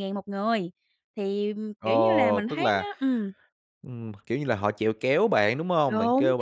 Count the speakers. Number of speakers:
two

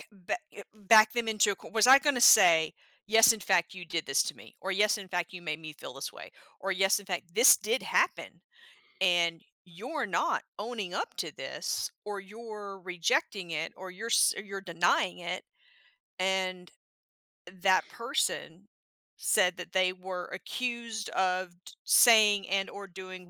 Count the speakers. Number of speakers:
one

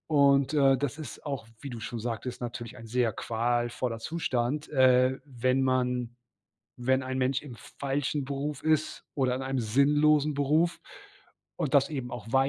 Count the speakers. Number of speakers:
one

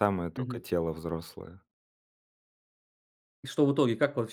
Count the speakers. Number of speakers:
two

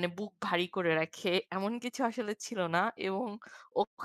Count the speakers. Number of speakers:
one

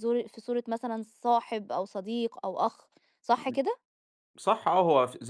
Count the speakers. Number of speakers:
two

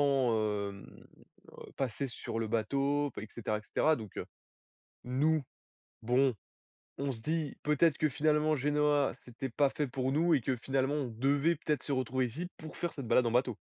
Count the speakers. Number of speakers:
one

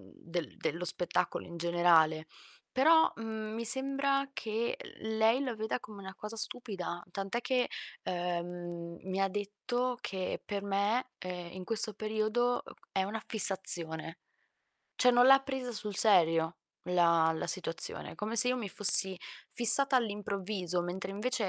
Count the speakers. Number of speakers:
one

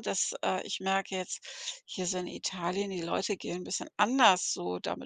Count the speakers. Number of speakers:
one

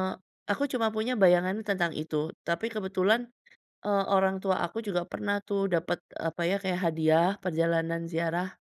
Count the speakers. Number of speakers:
one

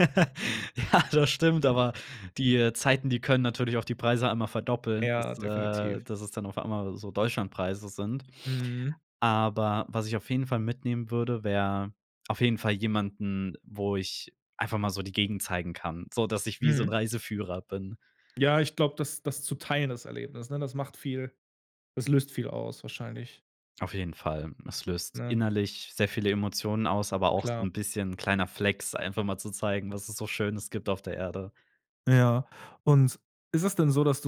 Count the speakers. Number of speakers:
two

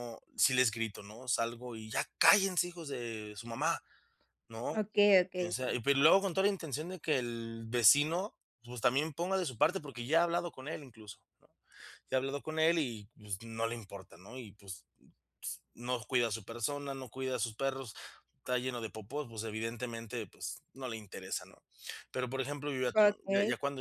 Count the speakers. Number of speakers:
two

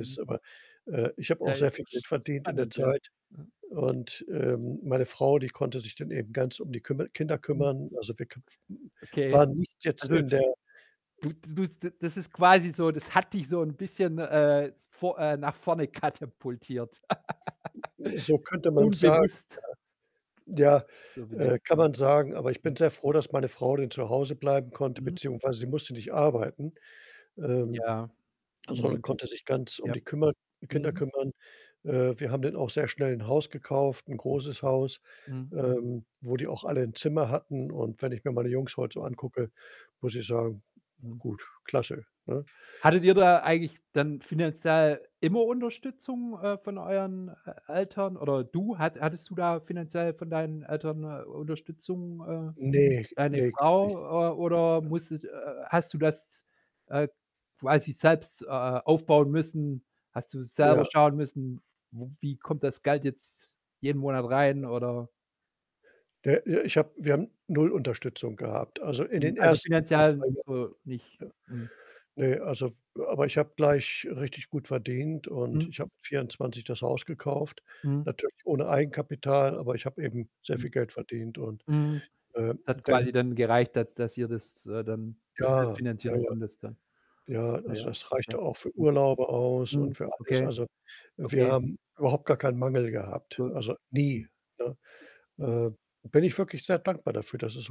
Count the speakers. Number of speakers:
two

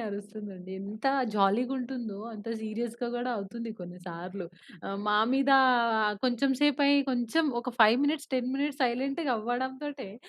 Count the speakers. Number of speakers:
one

